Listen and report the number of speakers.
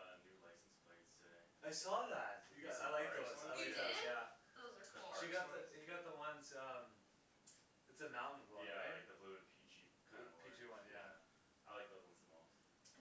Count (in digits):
3